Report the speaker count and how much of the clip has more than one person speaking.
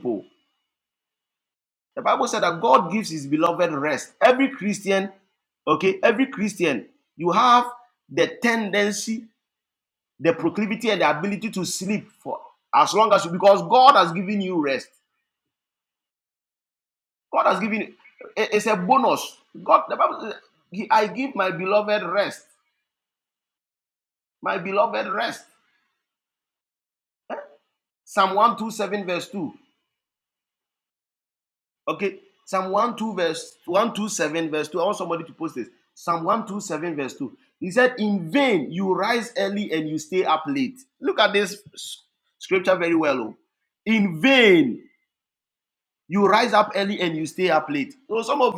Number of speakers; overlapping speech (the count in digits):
1, no overlap